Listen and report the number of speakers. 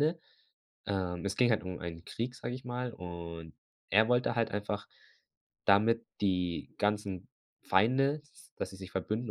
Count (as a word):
one